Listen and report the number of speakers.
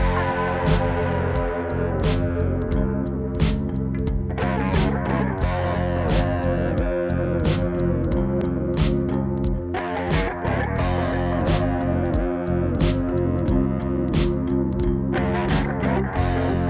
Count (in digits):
0